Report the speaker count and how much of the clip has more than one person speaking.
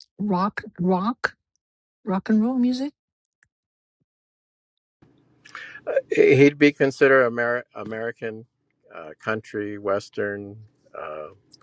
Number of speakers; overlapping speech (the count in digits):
2, no overlap